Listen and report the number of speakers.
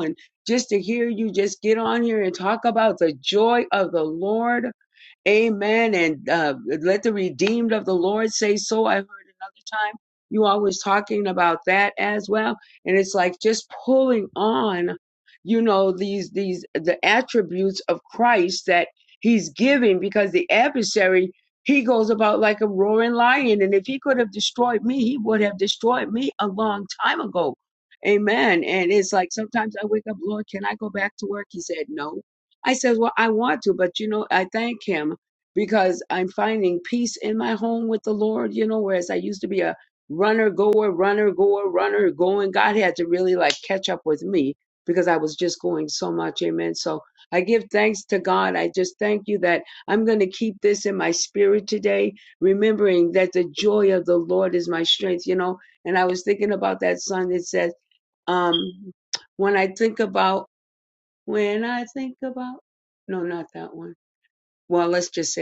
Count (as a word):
one